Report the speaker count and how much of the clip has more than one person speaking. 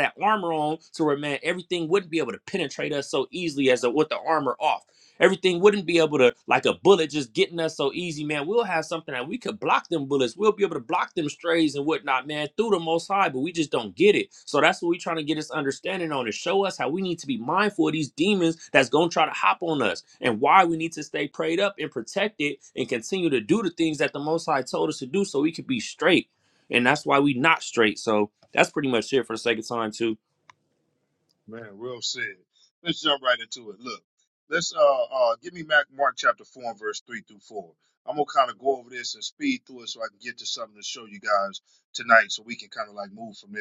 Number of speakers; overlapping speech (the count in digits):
2, no overlap